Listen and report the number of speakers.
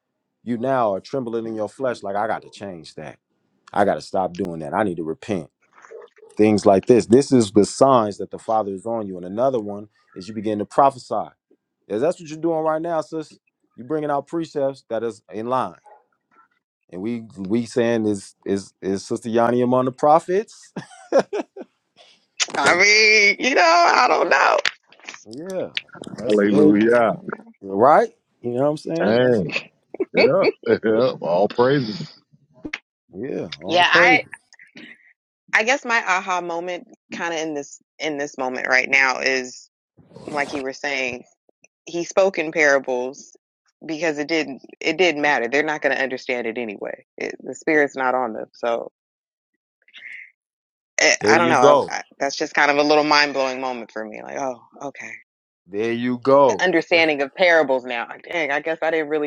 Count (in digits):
3